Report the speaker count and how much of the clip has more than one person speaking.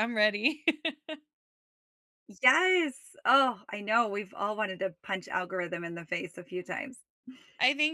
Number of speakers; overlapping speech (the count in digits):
2, no overlap